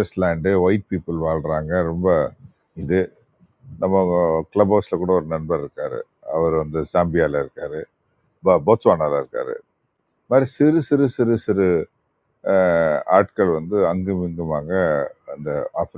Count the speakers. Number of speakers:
one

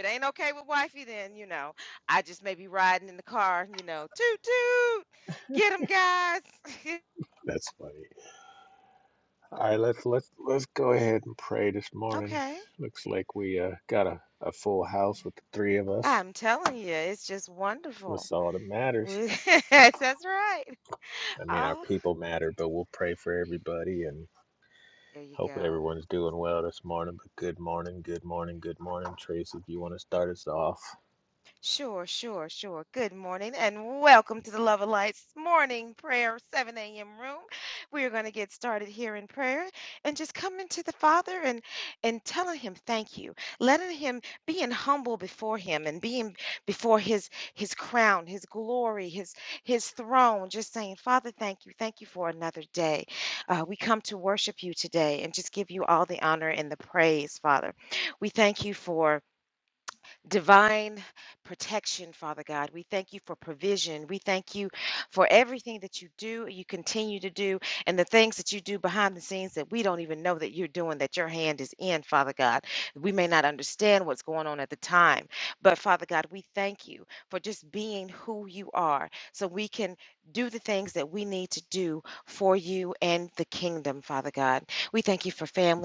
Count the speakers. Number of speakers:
two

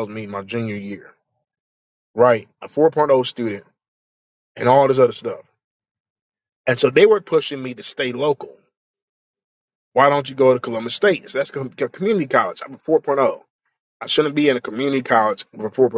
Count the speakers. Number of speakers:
one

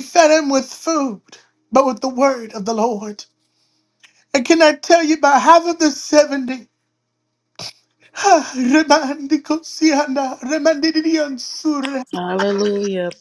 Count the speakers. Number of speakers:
two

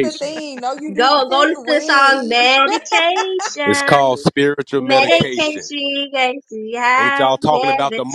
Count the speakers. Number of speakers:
three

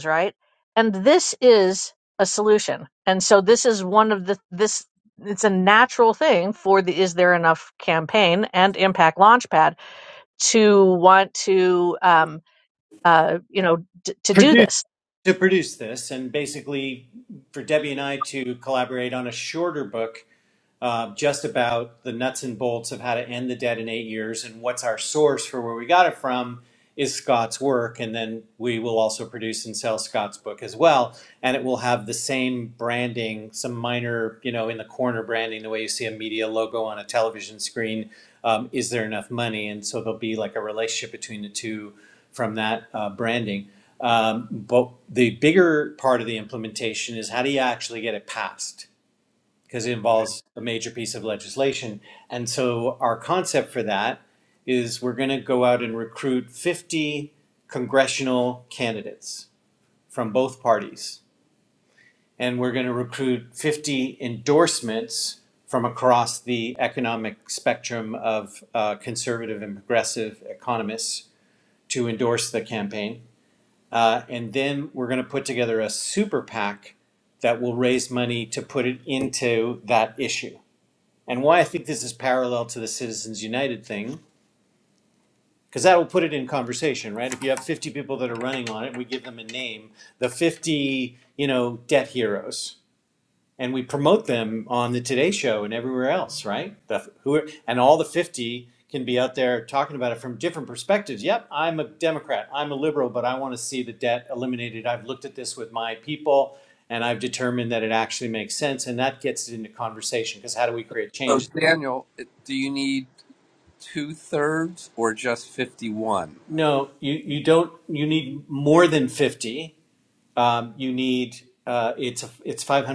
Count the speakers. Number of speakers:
three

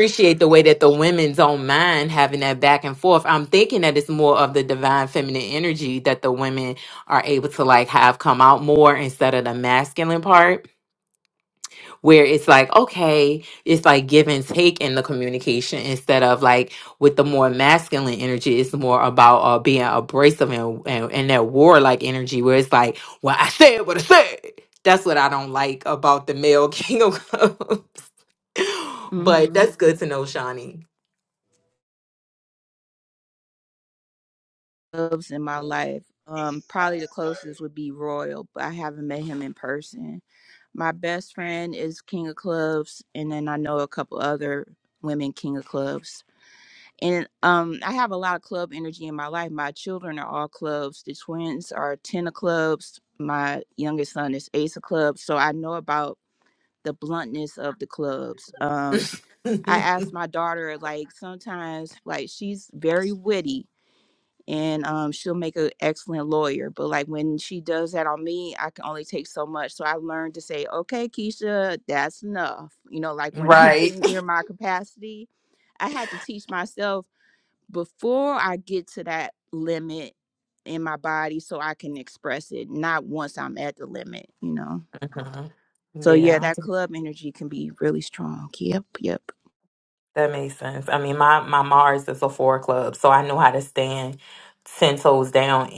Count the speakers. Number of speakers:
two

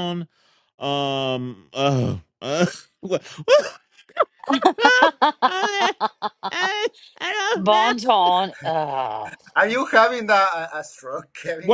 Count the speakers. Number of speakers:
three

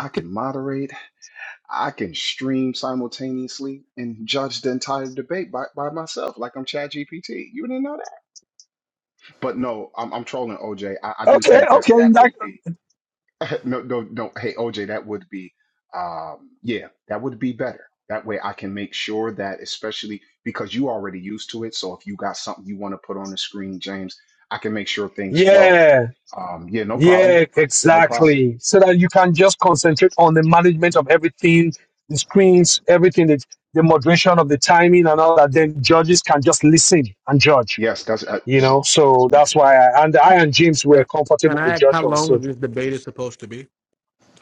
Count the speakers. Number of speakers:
three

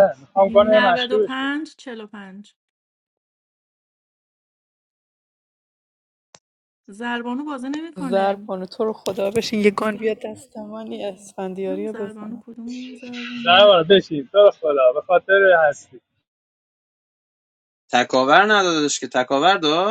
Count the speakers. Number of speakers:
four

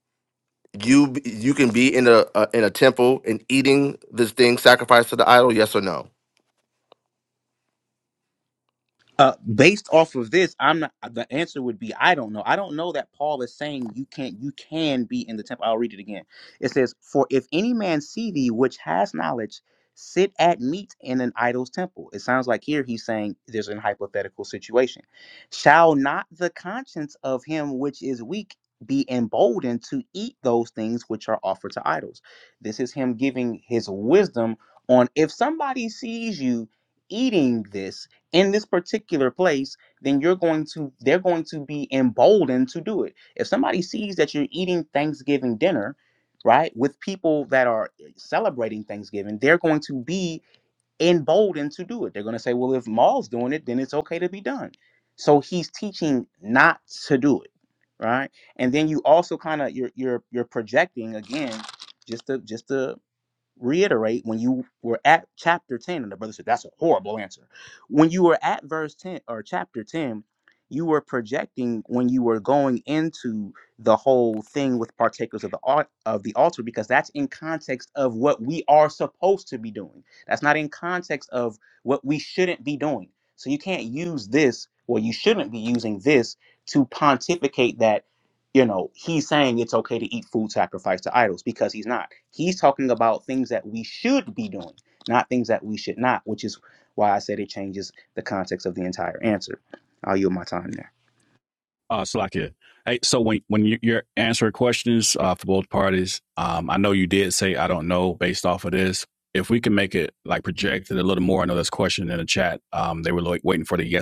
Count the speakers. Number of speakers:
three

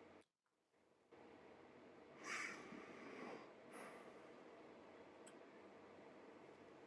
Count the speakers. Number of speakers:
zero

